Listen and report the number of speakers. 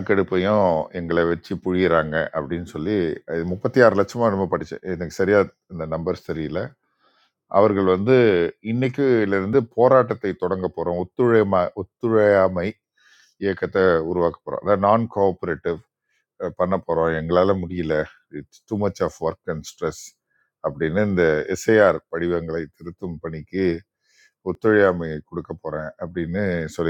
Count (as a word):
one